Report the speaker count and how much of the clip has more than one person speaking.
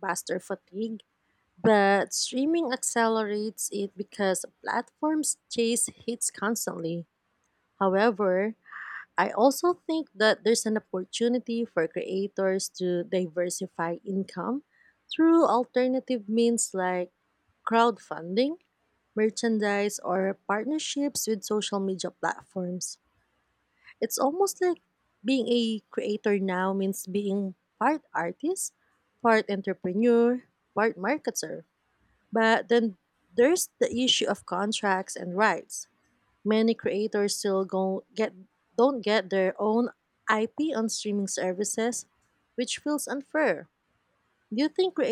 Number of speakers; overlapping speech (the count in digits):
1, no overlap